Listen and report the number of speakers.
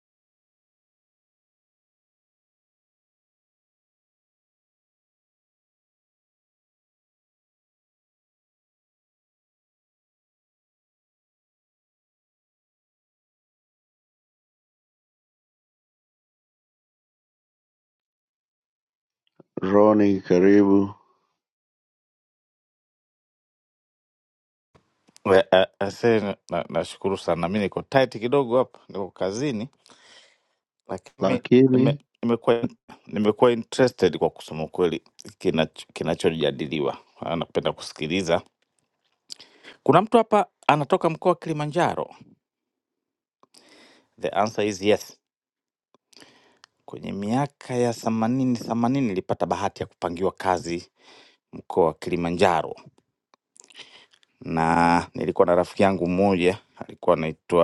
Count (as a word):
two